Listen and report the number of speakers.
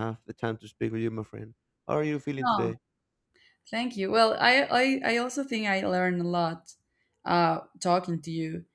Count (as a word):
two